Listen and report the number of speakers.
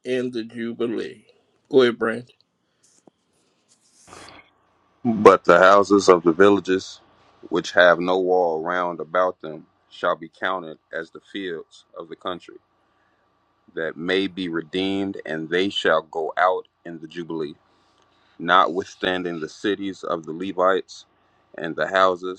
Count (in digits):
2